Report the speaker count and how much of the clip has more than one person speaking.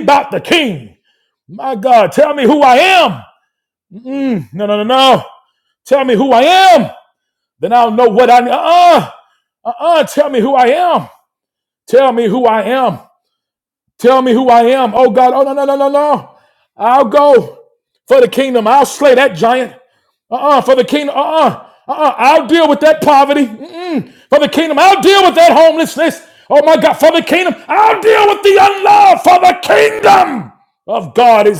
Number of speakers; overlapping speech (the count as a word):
one, no overlap